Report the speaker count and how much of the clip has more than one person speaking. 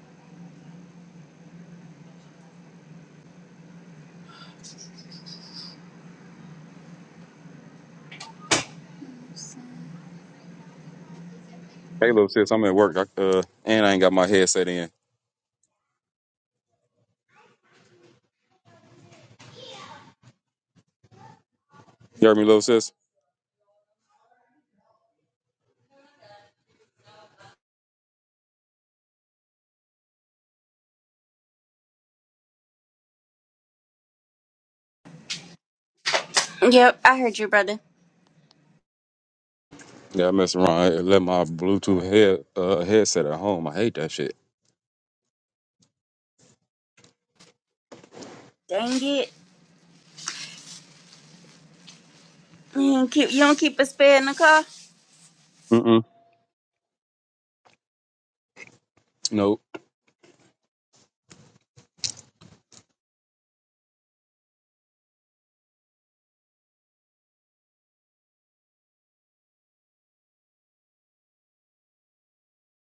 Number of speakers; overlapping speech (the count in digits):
2, no overlap